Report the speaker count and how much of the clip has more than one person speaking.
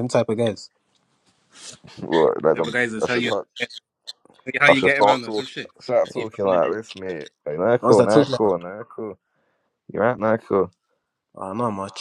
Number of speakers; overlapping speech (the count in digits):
3, about 23%